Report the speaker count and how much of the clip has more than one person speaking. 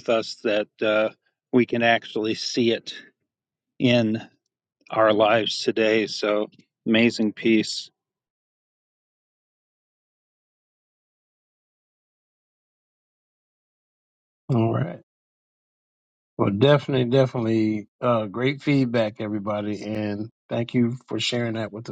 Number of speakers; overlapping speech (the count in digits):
2, no overlap